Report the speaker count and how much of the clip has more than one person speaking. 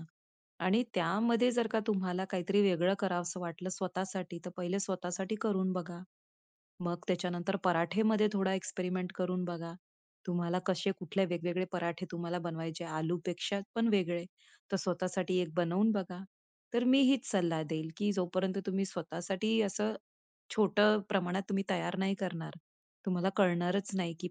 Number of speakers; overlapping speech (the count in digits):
1, no overlap